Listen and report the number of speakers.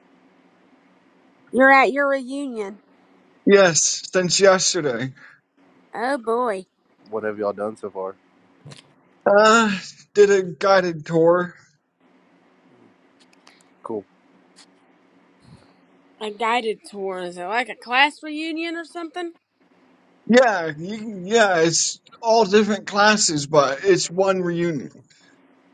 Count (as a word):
three